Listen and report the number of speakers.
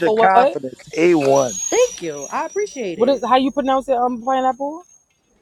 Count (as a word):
three